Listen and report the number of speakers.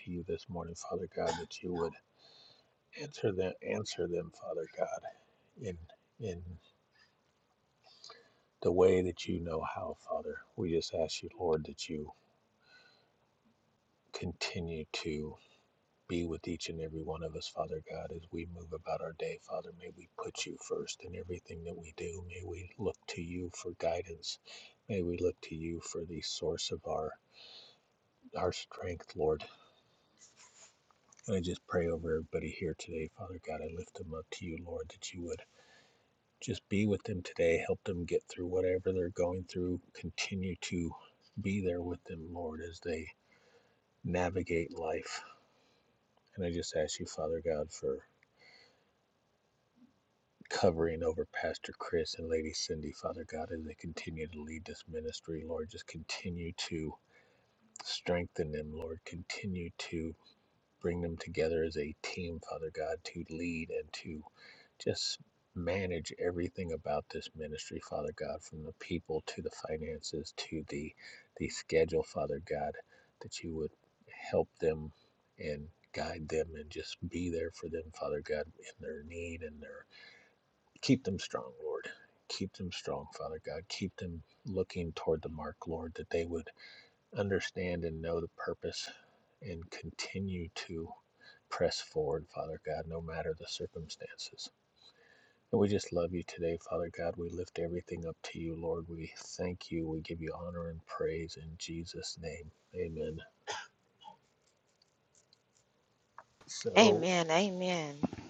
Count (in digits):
2